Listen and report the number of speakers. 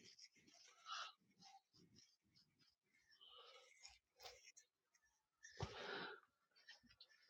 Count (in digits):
0